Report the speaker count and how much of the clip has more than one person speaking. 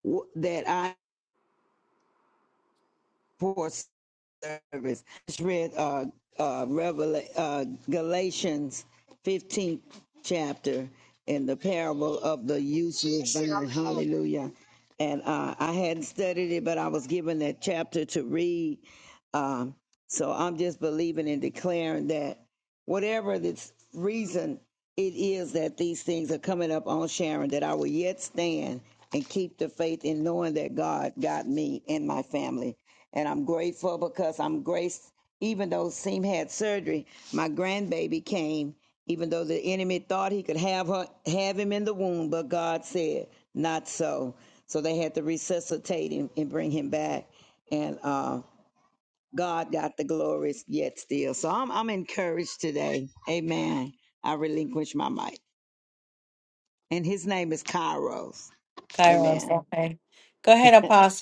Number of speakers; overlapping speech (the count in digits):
2, about 1%